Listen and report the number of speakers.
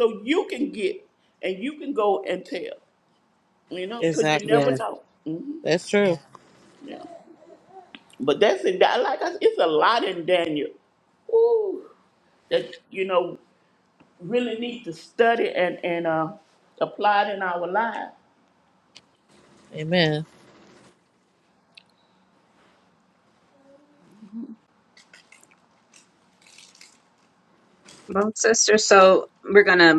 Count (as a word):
three